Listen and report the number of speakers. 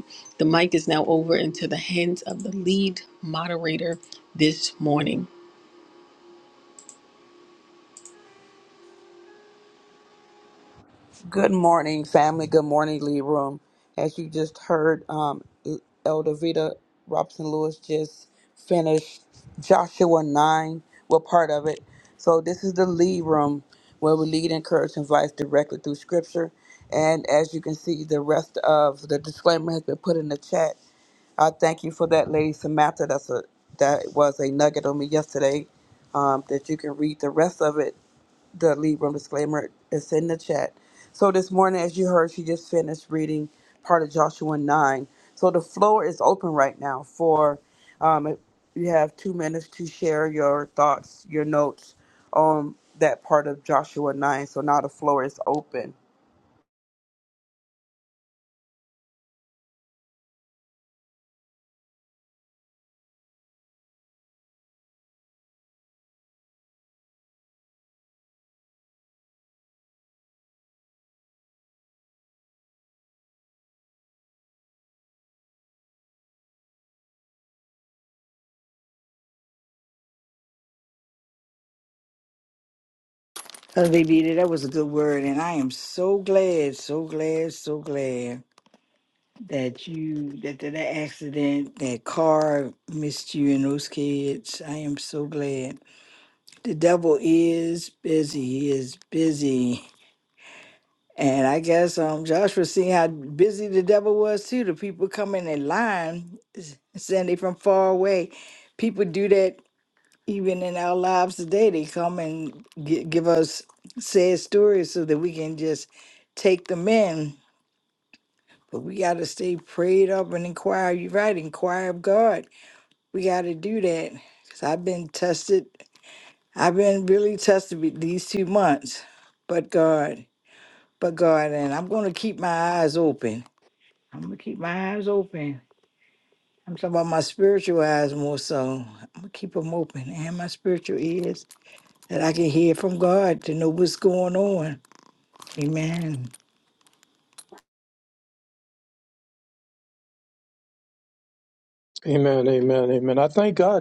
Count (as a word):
four